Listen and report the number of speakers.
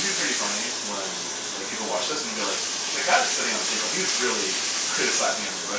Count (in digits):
1